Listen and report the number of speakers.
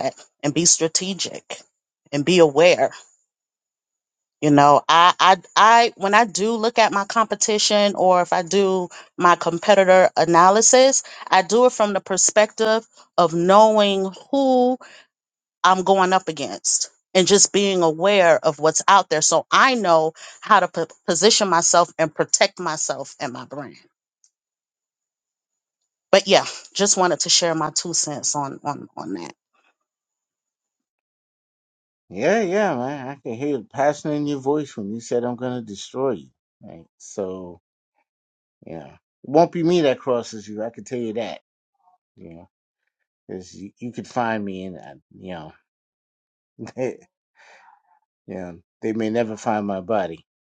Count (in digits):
2